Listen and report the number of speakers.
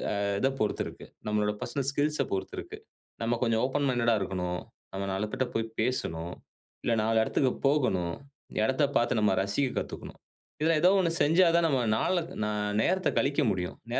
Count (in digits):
1